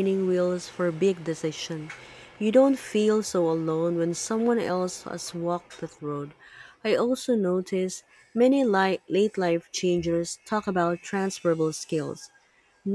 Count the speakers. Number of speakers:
1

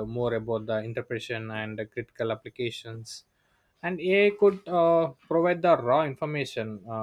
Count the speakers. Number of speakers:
1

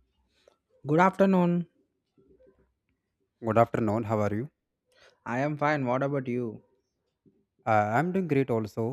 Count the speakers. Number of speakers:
2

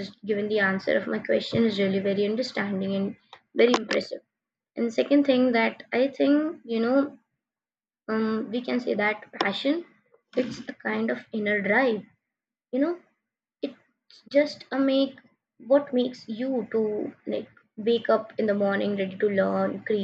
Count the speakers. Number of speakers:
1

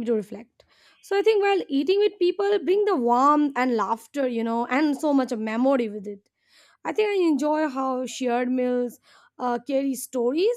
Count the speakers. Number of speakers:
1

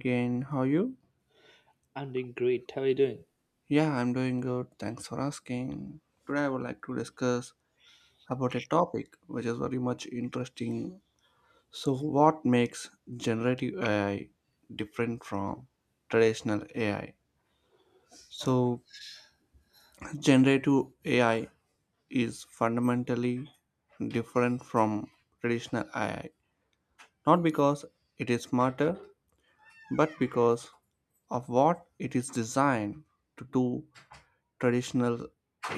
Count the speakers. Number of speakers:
2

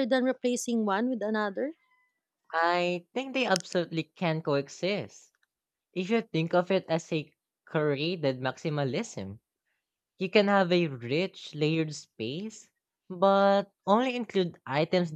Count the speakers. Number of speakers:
2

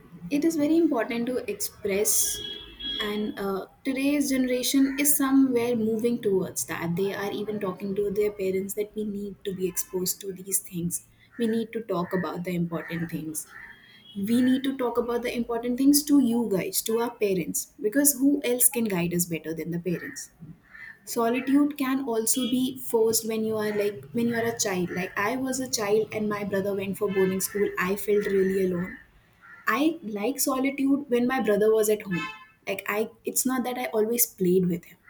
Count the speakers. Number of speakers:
1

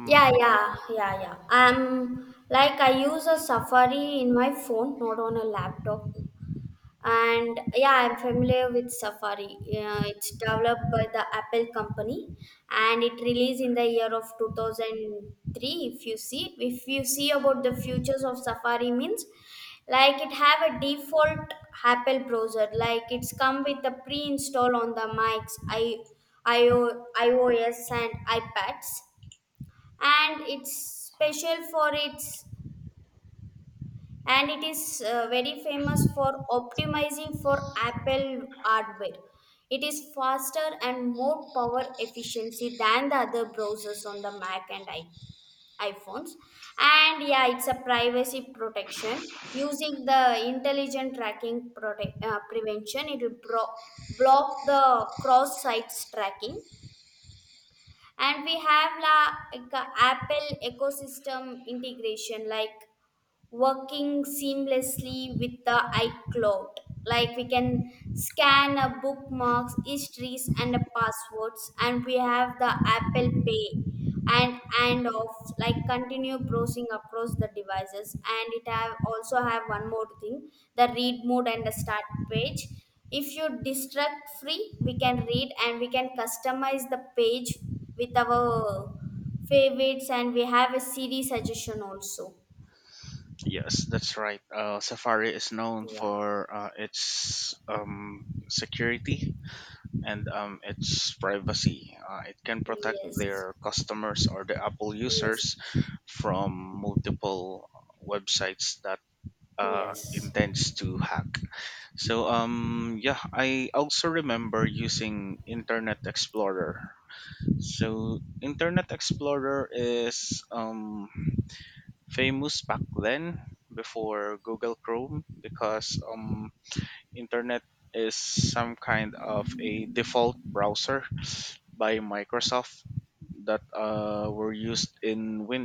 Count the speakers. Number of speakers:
2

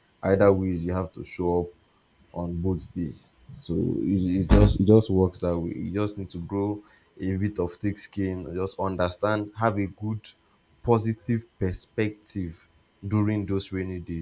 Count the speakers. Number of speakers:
1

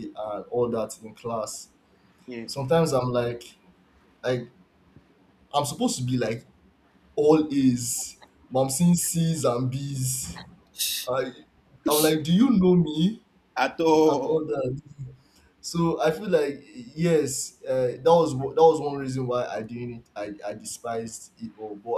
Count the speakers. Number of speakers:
2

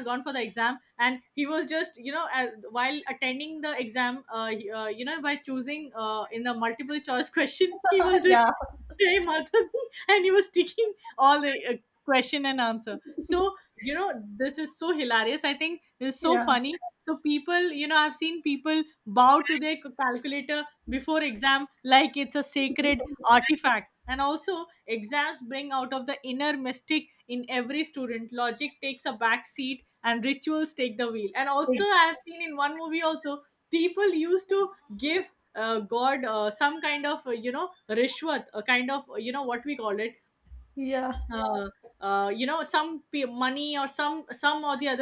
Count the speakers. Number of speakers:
2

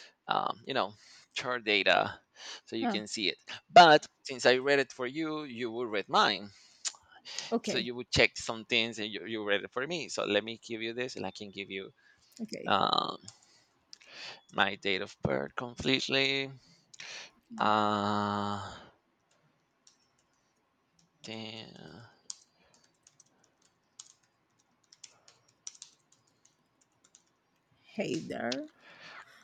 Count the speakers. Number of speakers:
2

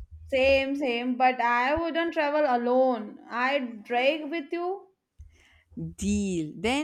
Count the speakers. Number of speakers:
2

